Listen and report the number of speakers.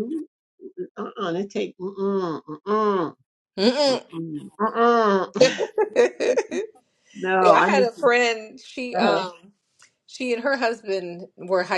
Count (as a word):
two